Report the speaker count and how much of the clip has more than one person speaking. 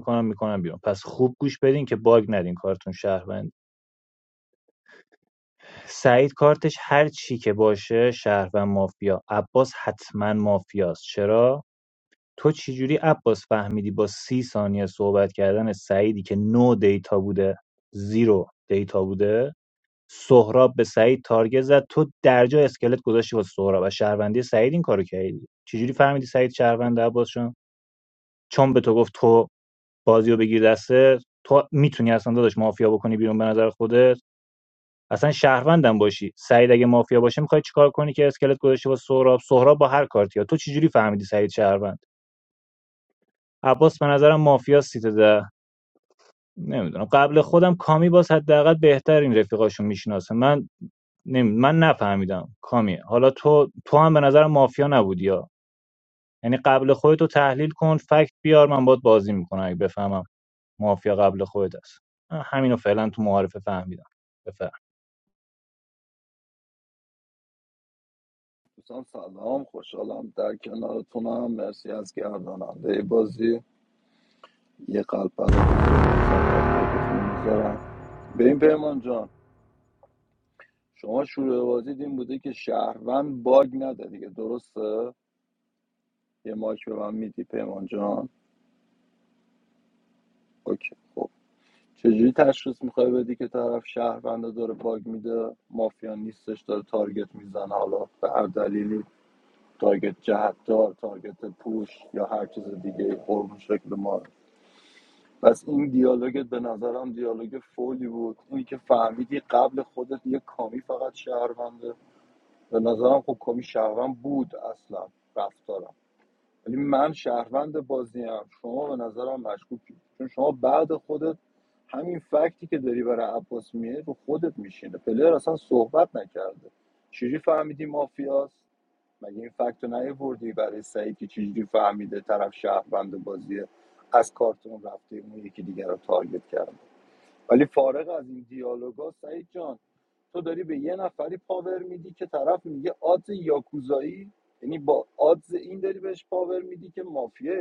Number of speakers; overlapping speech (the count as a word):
two, no overlap